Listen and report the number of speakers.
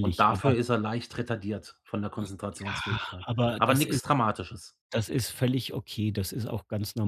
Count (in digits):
2